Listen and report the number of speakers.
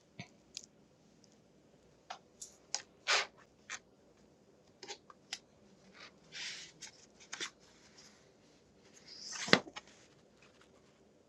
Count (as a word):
zero